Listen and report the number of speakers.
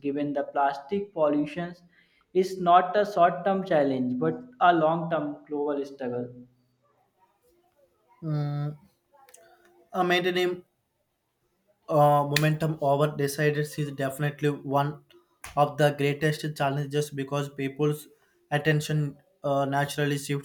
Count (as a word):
two